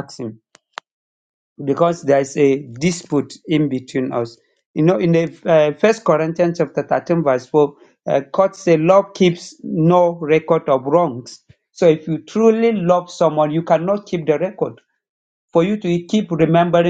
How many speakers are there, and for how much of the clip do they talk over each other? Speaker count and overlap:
1, no overlap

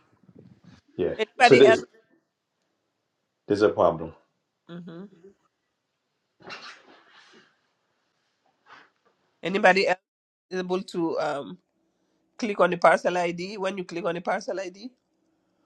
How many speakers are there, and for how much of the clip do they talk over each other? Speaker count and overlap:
2, about 4%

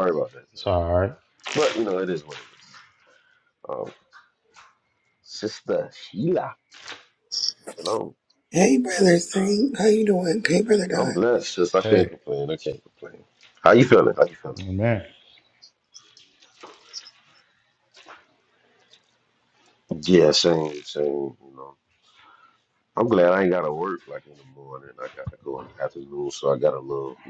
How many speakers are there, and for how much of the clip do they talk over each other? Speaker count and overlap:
3, about 2%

